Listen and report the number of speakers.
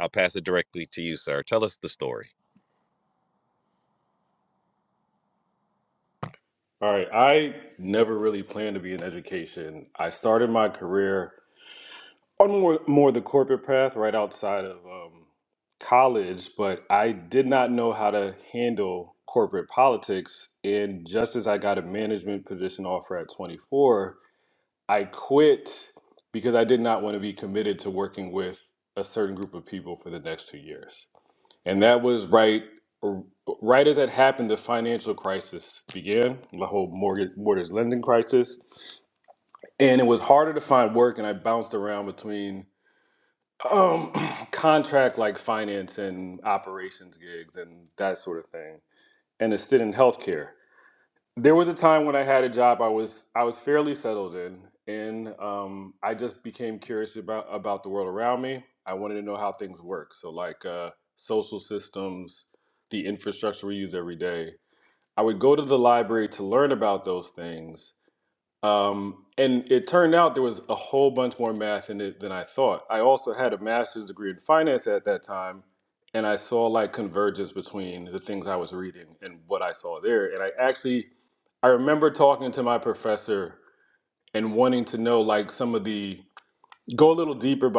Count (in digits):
2